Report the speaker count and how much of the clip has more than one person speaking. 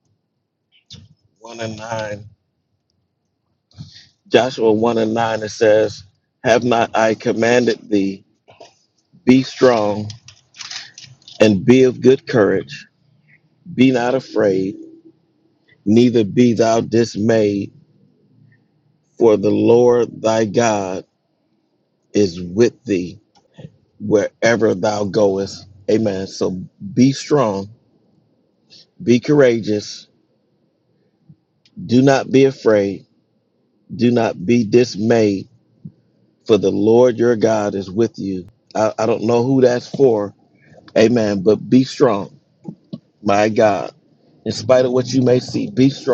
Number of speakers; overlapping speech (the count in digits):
1, no overlap